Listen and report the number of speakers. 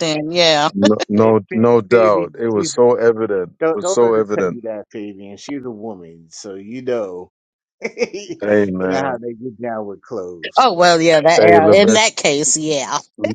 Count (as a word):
three